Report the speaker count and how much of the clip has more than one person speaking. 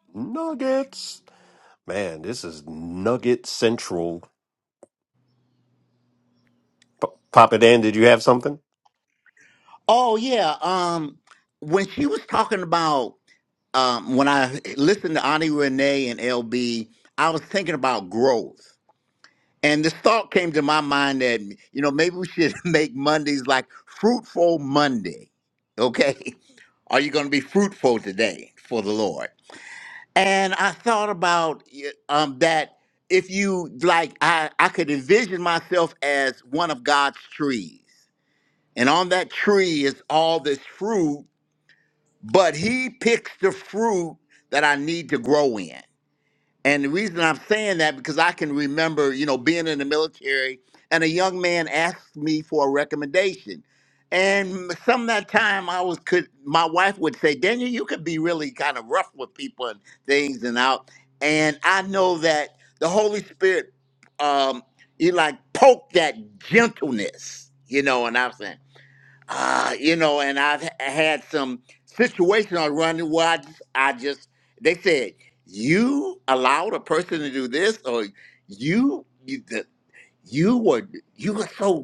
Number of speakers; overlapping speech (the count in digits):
2, no overlap